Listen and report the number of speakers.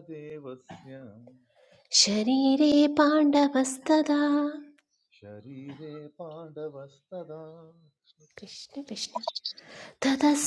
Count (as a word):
two